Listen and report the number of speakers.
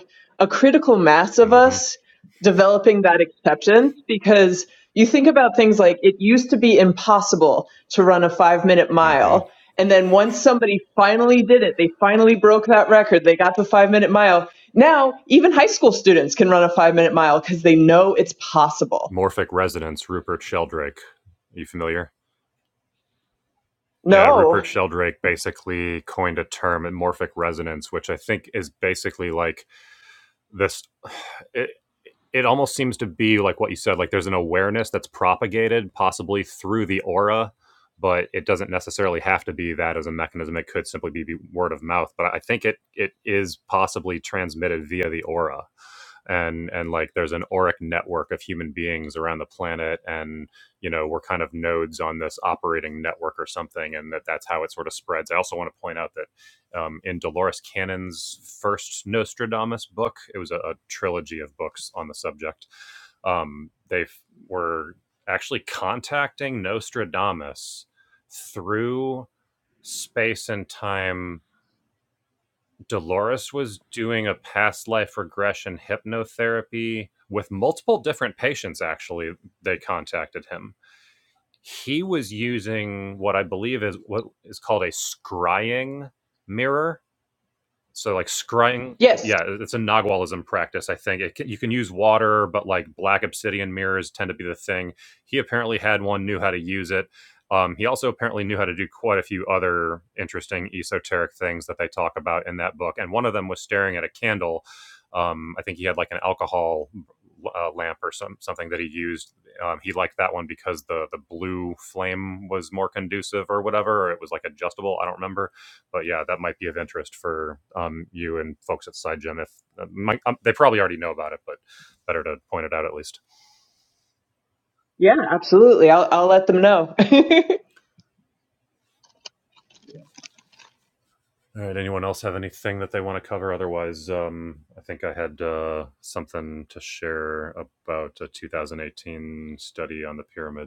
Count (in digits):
2